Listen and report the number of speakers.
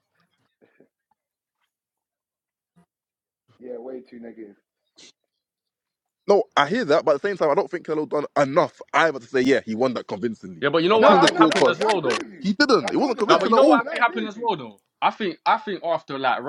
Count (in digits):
3